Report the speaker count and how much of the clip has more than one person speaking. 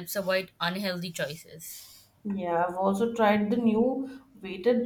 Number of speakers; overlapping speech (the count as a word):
two, no overlap